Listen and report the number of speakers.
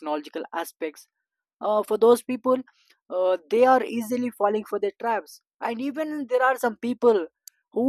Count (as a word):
one